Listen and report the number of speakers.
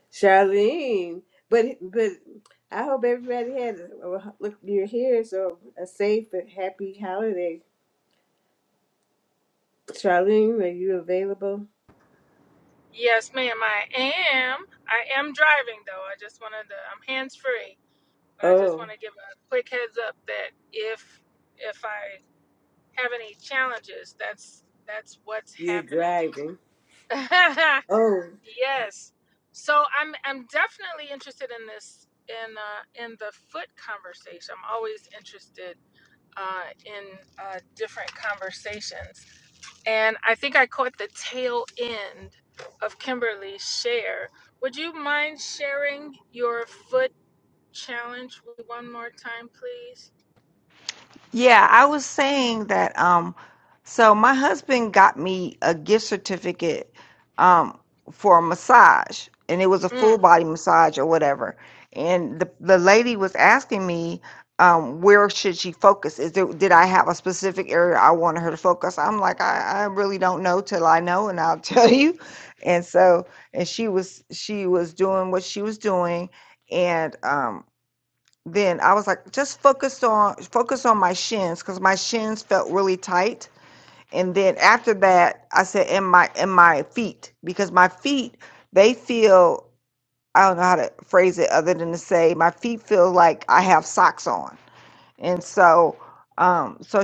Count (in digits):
3